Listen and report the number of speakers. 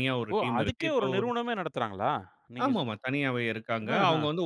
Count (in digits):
2